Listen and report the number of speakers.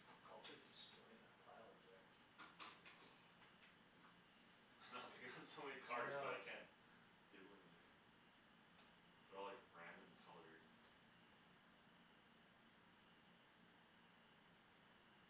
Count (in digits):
2